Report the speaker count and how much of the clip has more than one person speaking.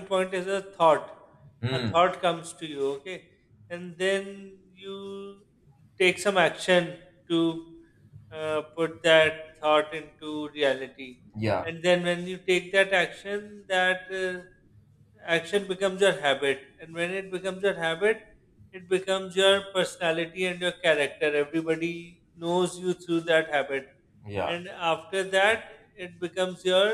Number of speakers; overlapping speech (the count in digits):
2, about 2%